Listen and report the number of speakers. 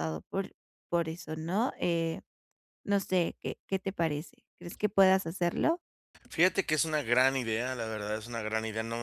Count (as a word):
two